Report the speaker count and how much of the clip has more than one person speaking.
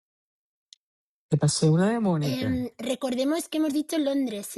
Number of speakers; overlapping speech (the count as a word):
two, about 7%